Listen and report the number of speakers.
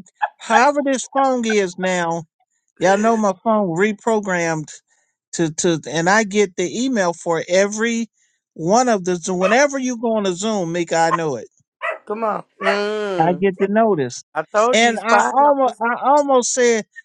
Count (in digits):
2